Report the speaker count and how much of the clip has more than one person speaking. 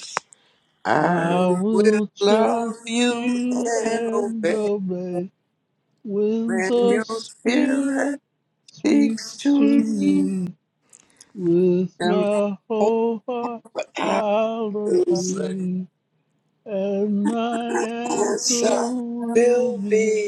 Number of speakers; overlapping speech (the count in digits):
2, about 41%